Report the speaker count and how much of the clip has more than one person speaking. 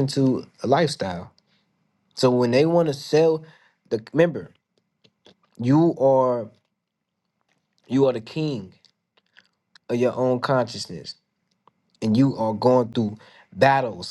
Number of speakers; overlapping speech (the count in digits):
1, no overlap